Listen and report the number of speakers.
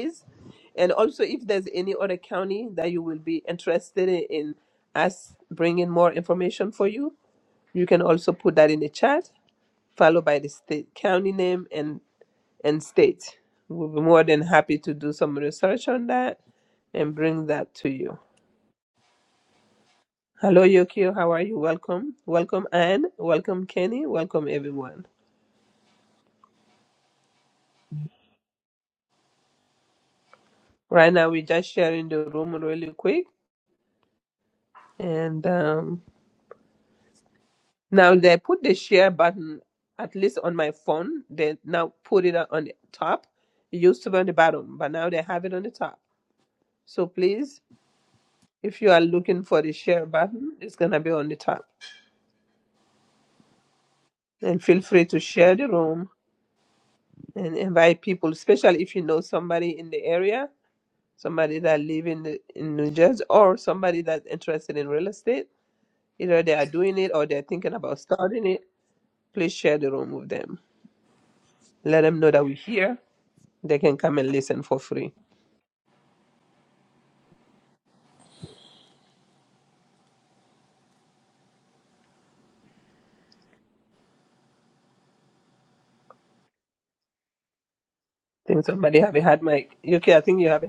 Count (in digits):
1